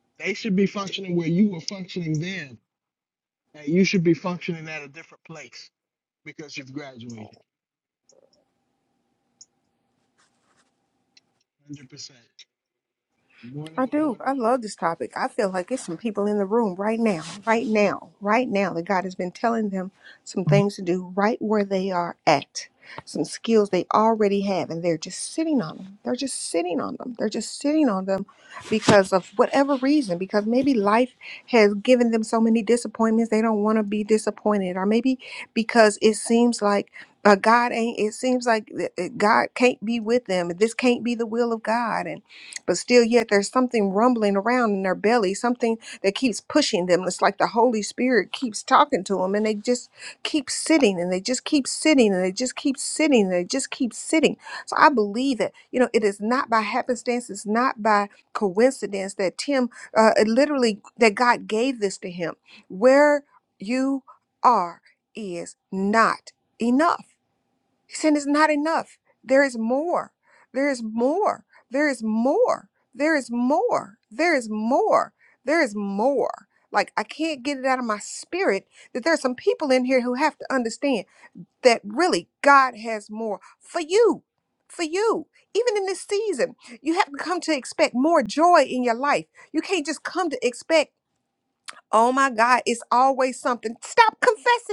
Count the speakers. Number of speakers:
two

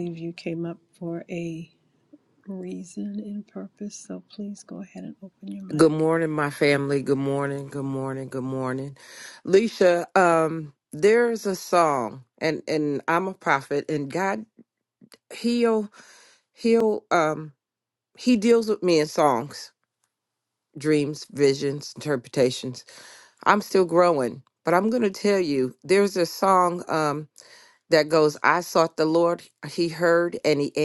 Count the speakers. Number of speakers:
two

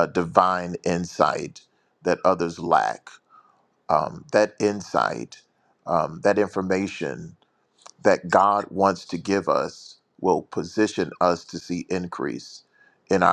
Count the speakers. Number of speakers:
one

